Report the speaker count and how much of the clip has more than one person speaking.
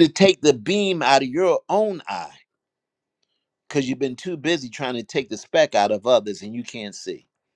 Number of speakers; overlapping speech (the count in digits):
1, no overlap